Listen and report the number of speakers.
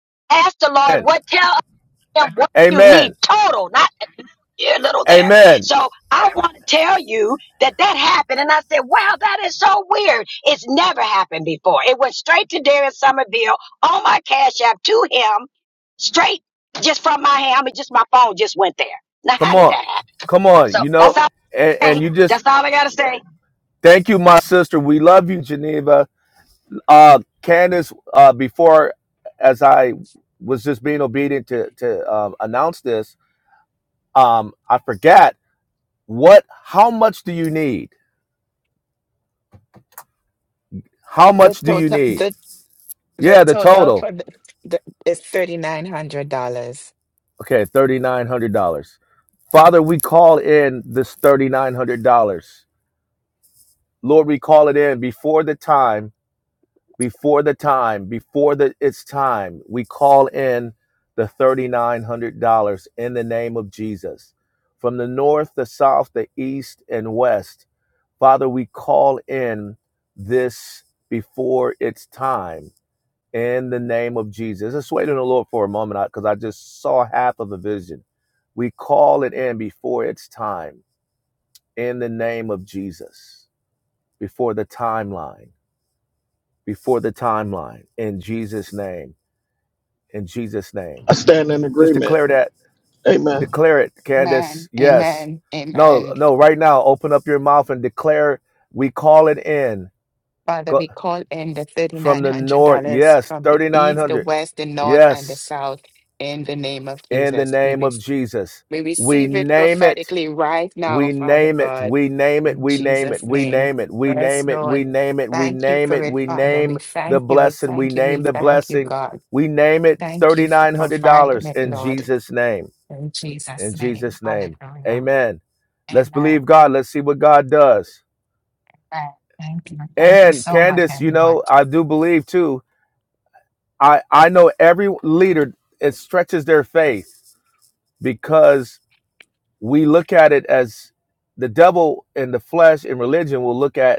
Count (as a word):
four